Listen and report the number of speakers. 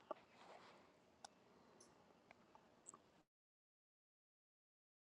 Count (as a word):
zero